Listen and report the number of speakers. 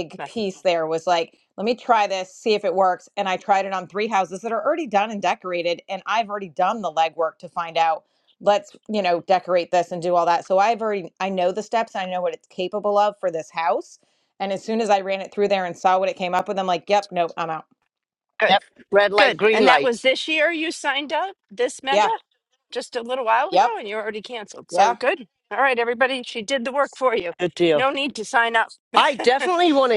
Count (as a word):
three